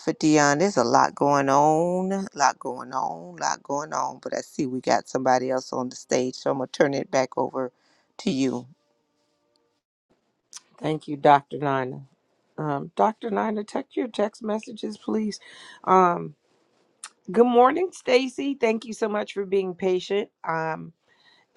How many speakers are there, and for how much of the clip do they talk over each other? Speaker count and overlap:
2, no overlap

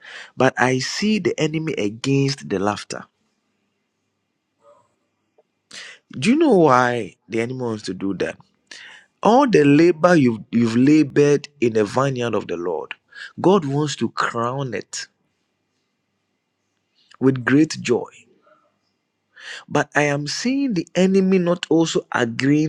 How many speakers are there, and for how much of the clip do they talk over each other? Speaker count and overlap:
1, no overlap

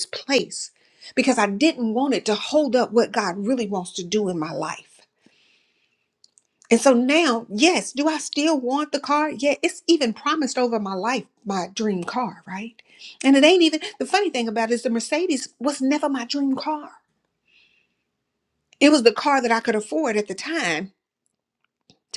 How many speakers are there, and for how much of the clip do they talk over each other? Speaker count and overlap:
1, no overlap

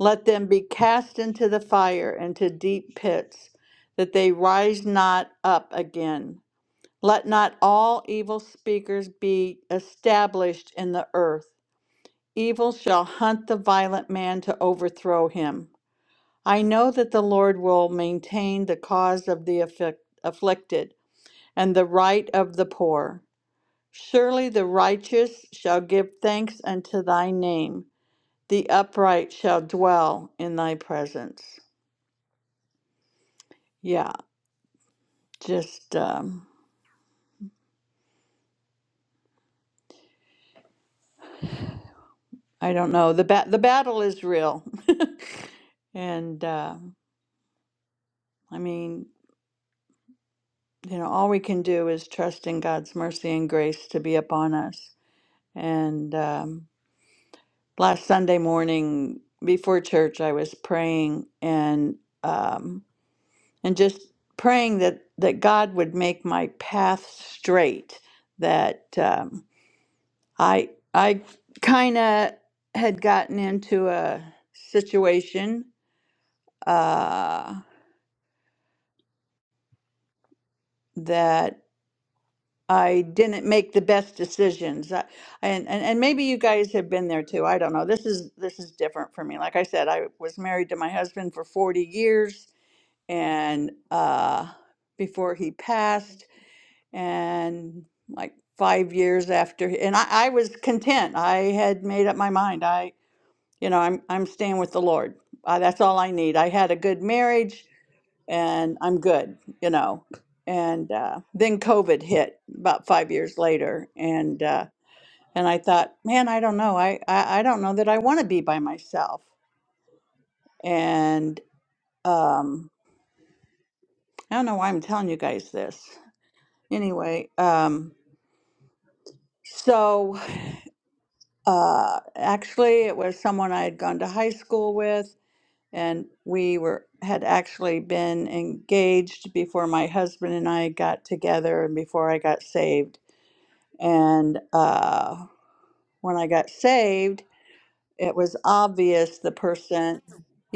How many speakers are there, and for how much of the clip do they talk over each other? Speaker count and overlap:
1, no overlap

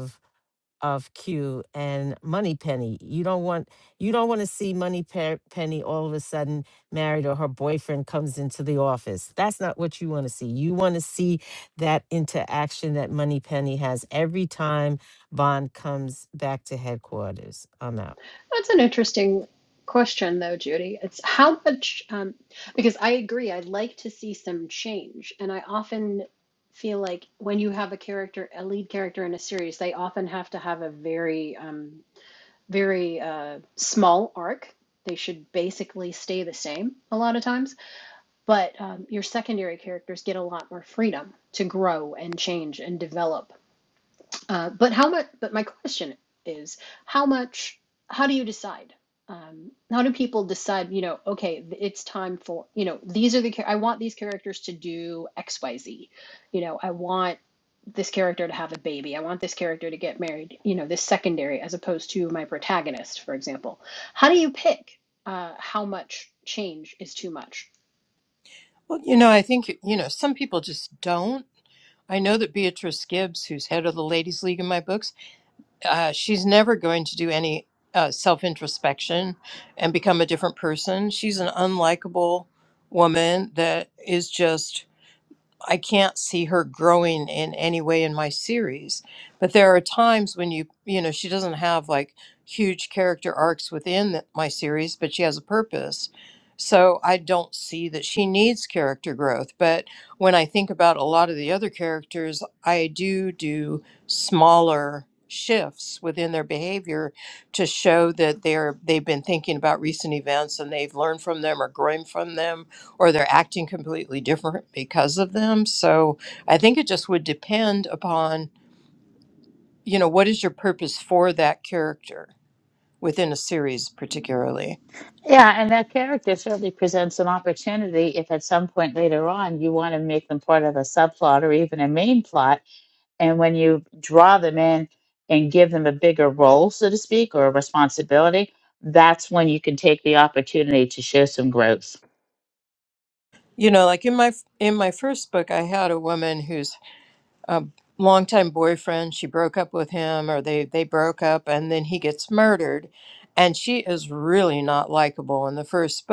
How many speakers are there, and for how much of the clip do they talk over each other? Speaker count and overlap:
4, no overlap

